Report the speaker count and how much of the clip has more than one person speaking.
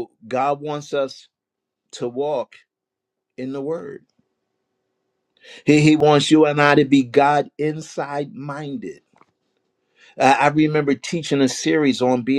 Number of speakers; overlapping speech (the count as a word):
one, no overlap